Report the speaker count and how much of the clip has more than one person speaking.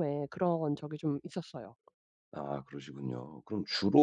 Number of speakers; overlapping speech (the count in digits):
2, no overlap